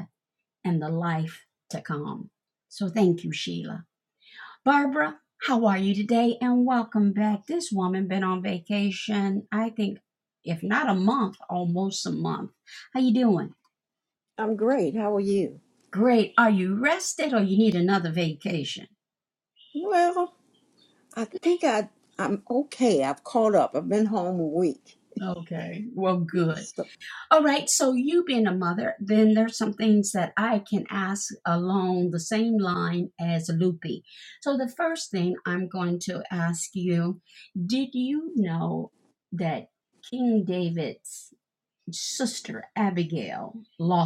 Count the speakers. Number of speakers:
2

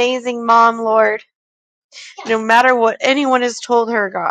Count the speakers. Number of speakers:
1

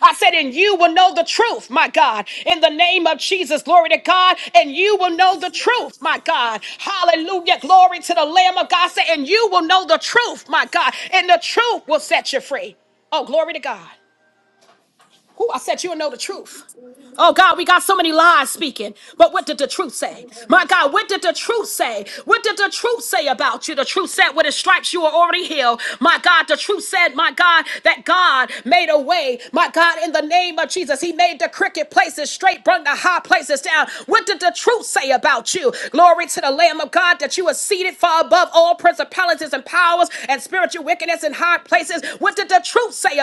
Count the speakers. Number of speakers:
1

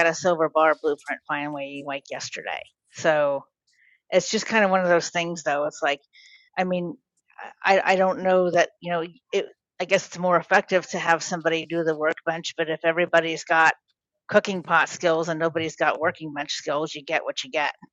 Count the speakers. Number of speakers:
1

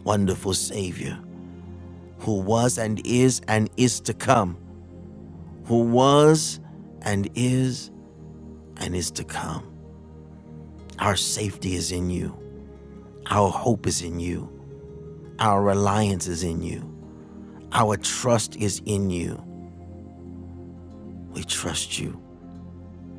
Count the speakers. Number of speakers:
1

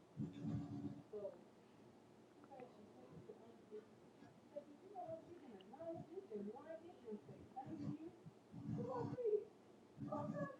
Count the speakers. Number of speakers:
0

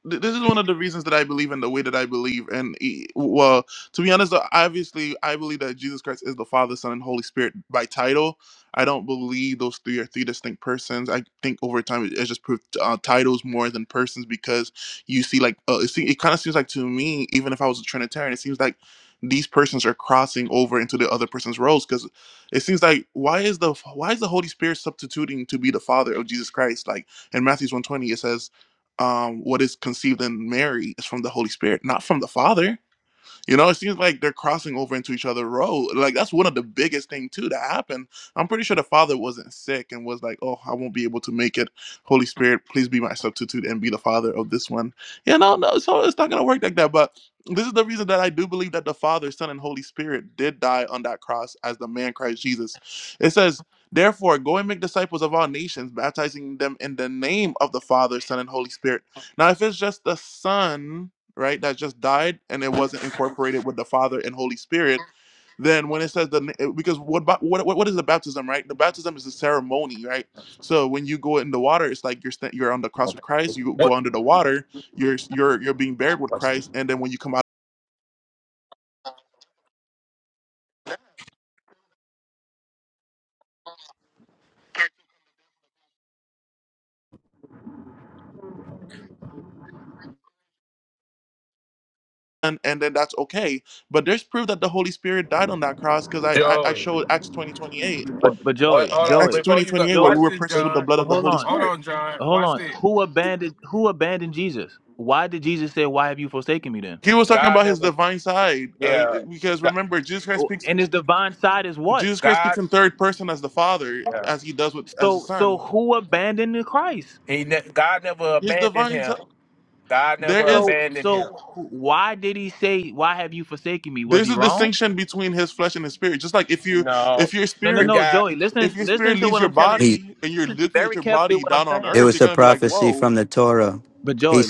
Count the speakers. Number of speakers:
4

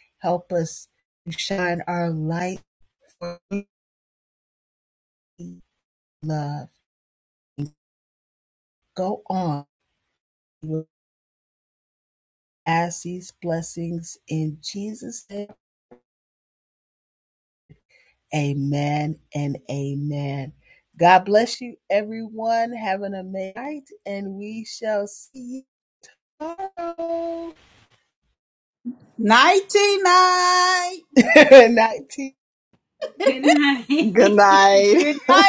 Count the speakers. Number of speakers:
4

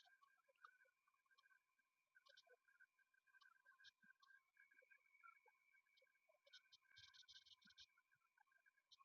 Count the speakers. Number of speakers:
0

